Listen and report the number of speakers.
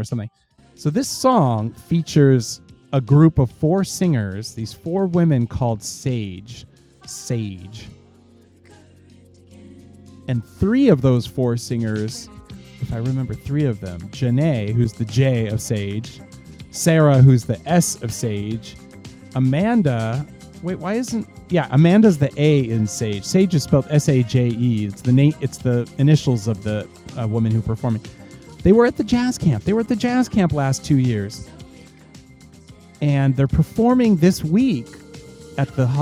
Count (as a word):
one